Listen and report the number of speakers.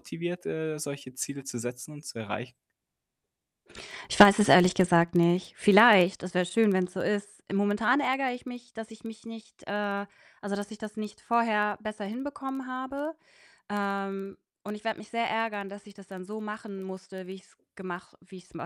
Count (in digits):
2